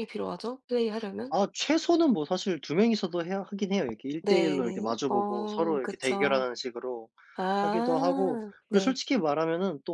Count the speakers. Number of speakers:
two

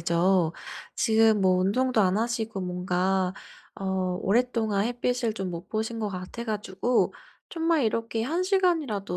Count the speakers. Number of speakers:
one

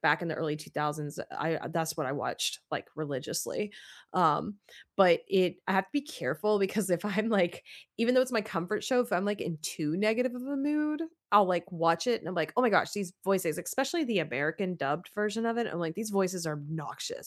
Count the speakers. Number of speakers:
one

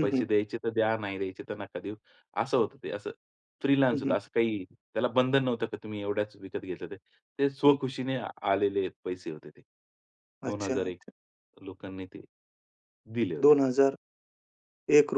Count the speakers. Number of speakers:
two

